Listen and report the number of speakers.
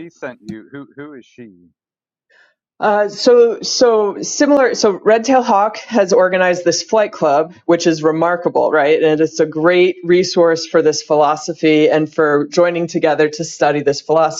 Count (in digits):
2